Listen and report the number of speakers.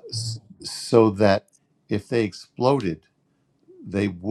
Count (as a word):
one